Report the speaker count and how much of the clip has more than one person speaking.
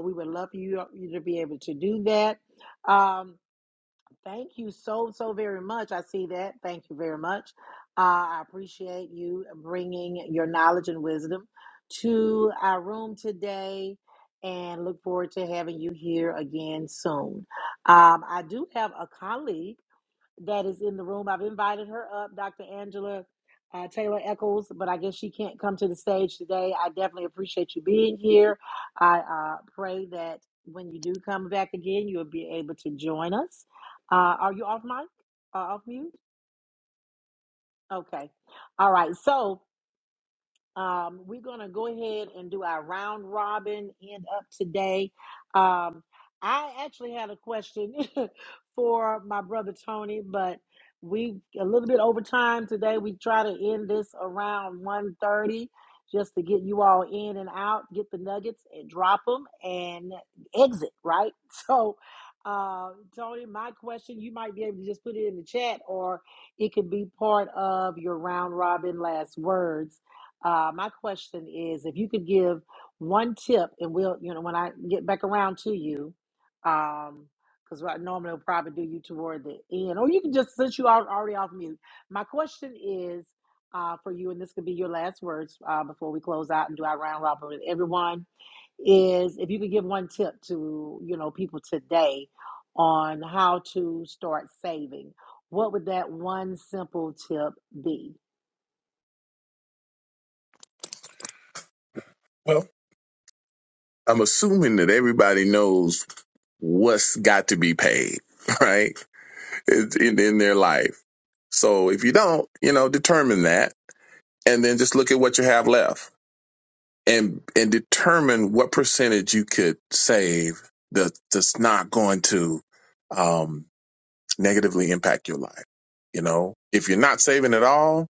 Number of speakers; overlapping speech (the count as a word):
two, no overlap